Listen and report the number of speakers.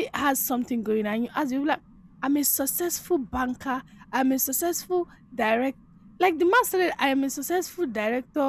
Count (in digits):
1